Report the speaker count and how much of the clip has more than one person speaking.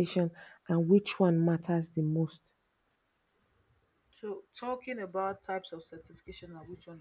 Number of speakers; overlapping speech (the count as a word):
two, no overlap